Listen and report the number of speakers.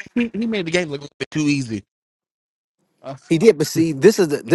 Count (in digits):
2